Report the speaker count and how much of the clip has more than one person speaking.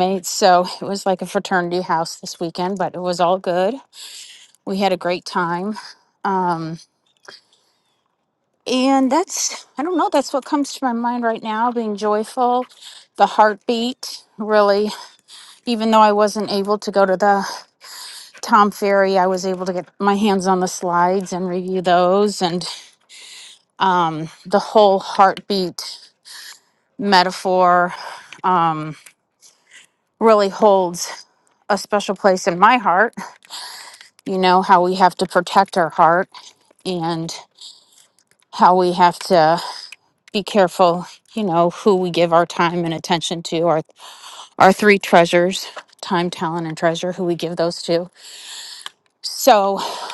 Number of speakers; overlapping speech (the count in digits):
1, no overlap